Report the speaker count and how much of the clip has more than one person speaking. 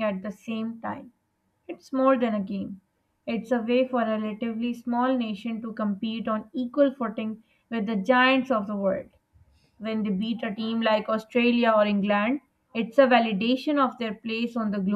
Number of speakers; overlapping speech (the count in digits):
1, no overlap